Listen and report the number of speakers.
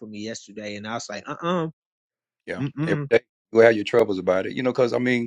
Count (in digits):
2